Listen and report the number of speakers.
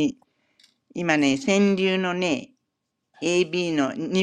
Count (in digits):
1